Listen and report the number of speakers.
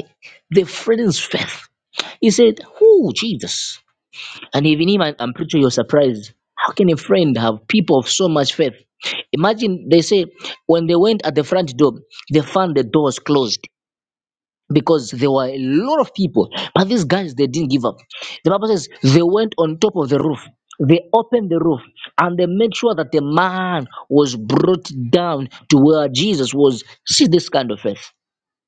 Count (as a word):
one